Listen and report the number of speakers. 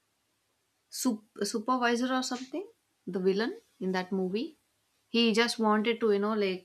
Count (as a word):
one